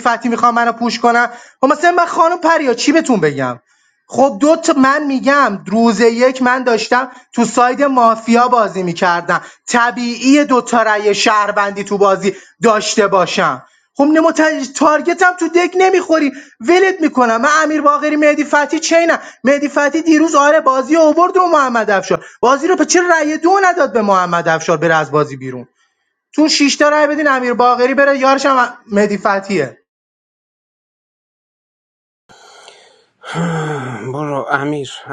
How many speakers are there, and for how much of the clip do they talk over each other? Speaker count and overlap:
two, no overlap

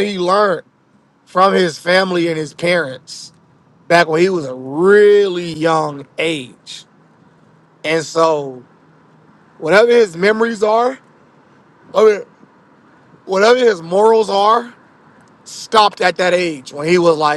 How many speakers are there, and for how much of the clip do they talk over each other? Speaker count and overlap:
one, no overlap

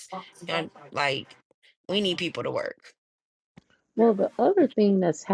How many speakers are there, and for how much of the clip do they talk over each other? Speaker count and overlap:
two, no overlap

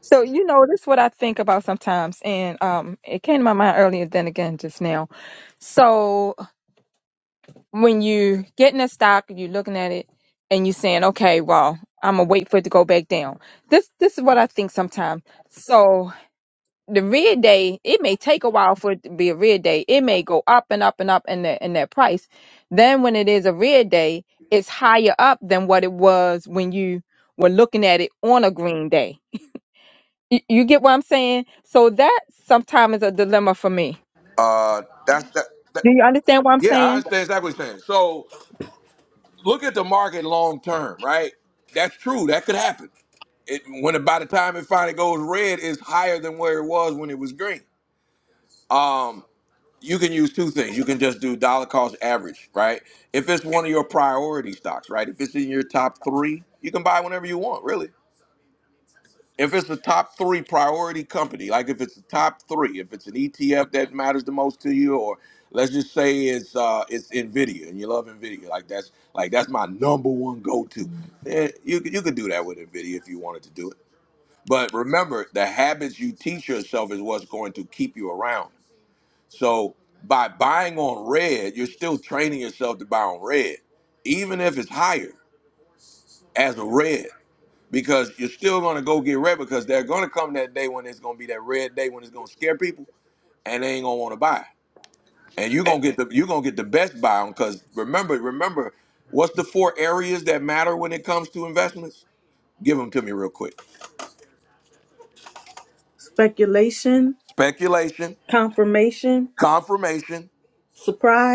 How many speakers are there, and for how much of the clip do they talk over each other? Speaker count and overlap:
three, under 1%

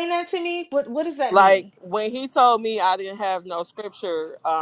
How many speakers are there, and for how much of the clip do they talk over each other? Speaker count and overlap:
two, about 7%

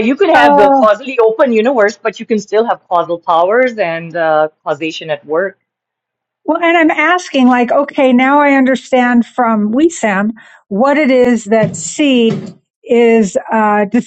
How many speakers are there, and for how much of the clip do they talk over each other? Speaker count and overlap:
two, about 4%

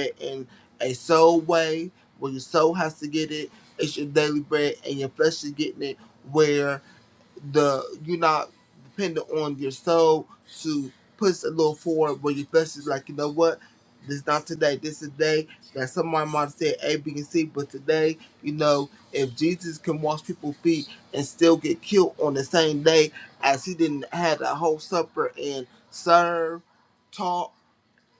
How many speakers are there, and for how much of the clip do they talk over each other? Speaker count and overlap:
one, no overlap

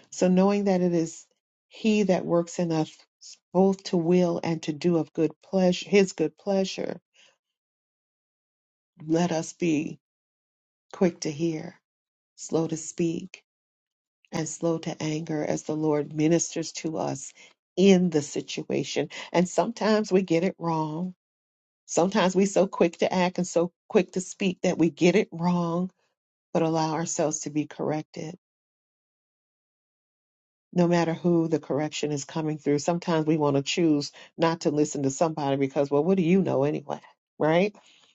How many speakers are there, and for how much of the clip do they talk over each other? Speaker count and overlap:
one, no overlap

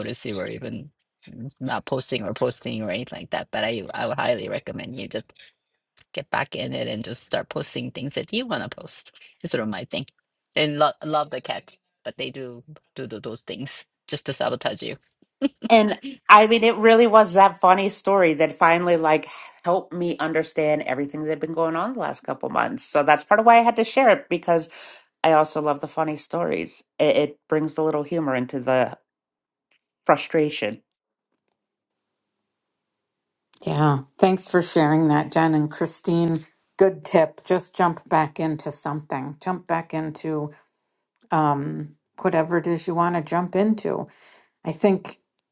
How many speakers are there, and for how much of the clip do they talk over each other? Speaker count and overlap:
three, no overlap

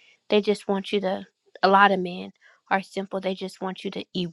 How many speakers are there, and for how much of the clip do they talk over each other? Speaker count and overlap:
one, no overlap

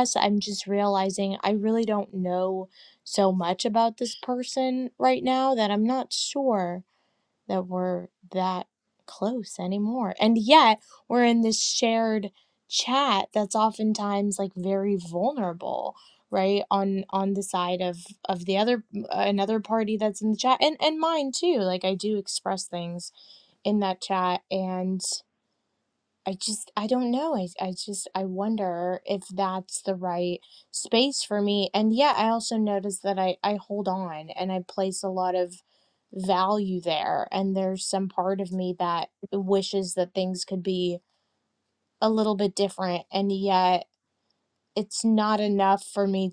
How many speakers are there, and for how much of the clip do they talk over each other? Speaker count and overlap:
one, no overlap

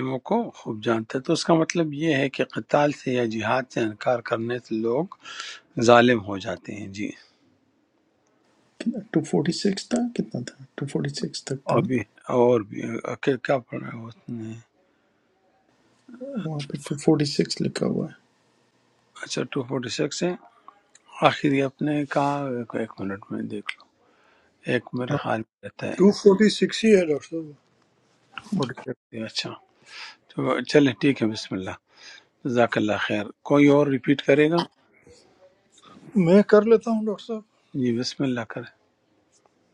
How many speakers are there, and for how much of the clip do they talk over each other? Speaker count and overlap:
three, about 1%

